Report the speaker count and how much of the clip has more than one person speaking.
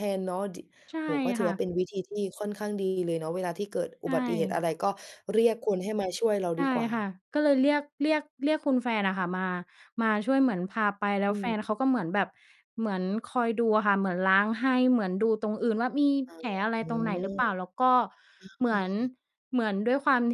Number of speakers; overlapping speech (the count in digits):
2, about 7%